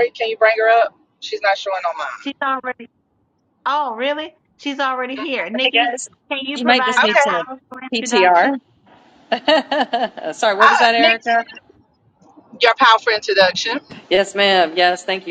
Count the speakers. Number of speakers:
3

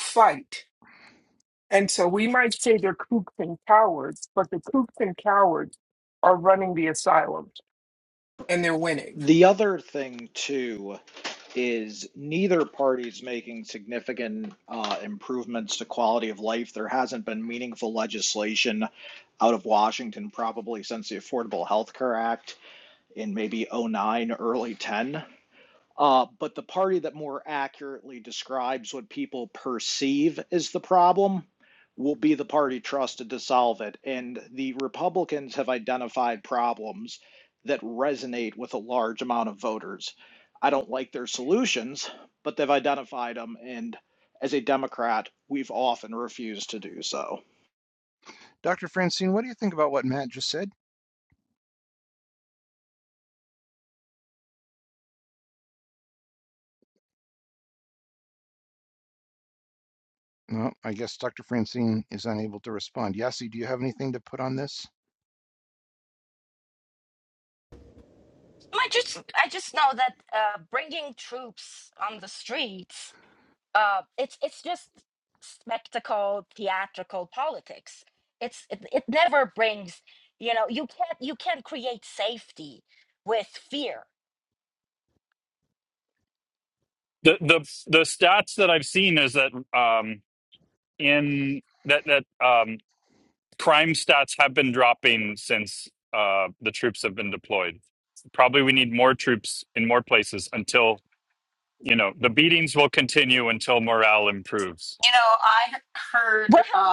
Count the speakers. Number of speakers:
6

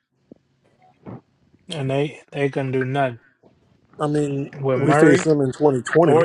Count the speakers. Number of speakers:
2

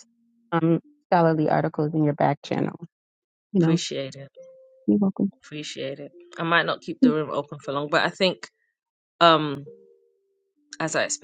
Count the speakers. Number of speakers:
2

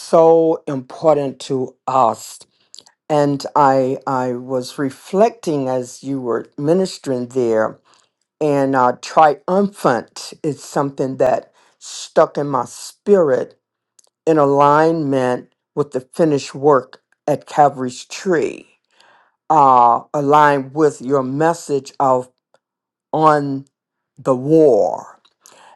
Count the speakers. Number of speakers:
1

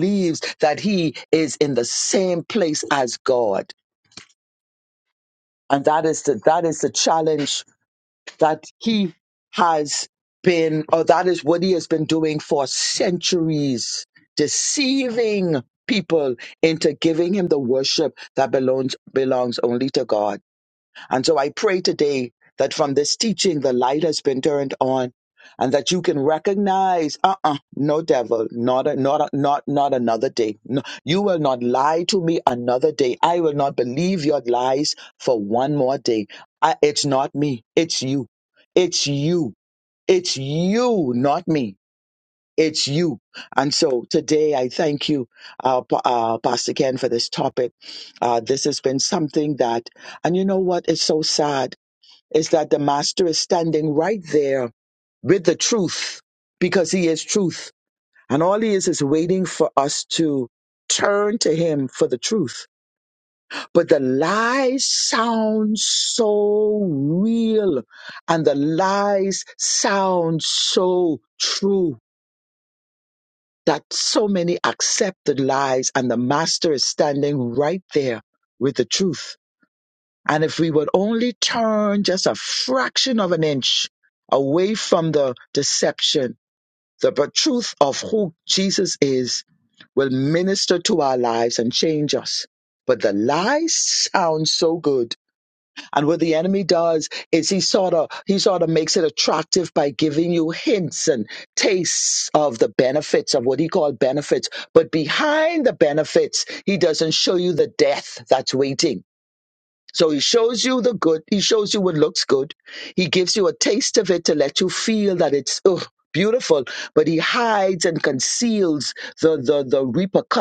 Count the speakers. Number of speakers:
1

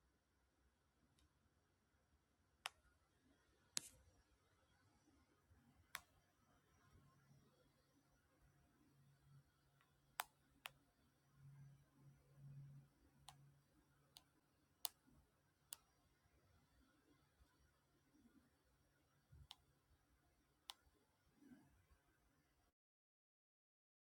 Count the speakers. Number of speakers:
0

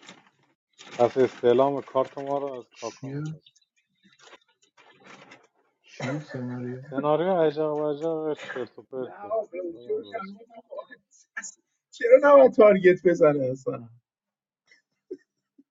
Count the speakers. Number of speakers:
3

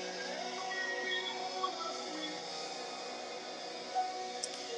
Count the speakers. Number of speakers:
0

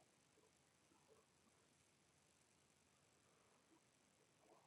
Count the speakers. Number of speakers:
0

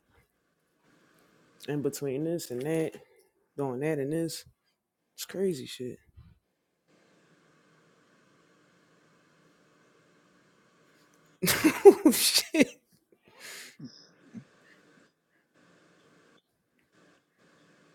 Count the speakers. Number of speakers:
1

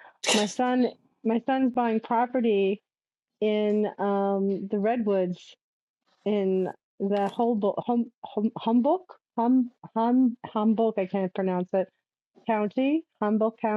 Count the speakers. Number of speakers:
1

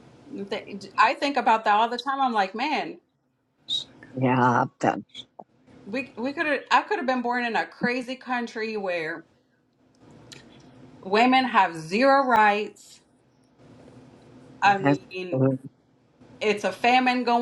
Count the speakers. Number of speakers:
2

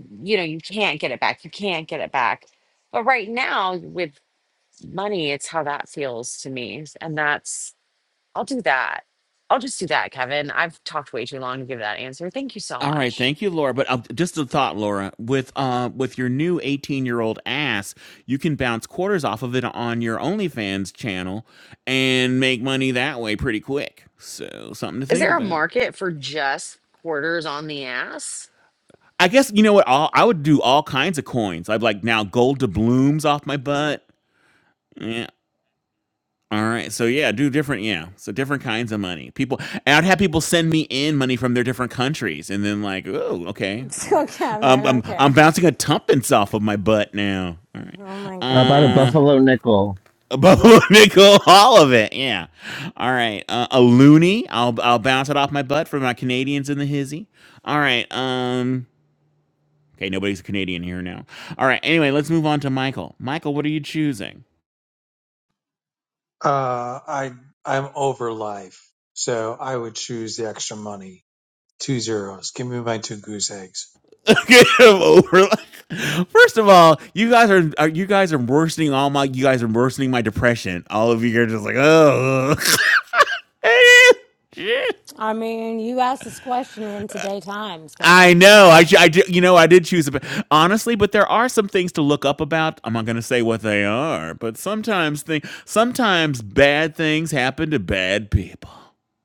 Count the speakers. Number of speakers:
5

